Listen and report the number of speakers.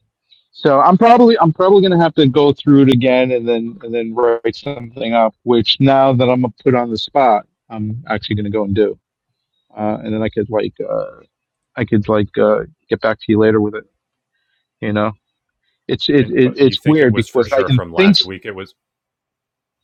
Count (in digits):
2